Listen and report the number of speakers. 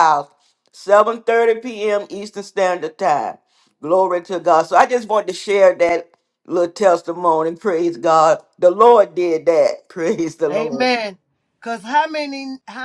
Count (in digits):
2